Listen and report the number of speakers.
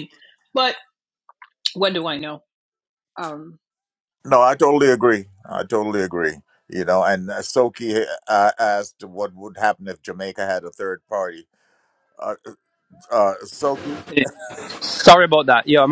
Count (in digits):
3